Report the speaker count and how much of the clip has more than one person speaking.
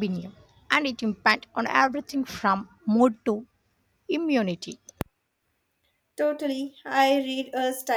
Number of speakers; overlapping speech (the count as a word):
two, no overlap